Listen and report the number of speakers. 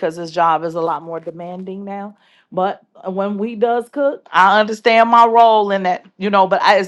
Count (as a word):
one